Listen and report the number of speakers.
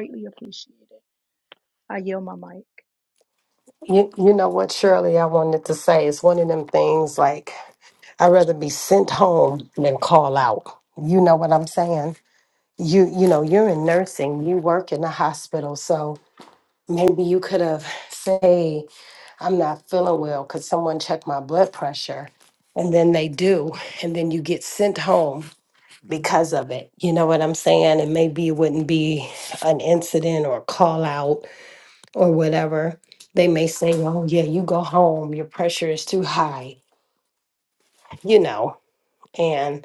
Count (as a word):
two